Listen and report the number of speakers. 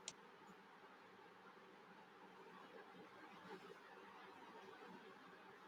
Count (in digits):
0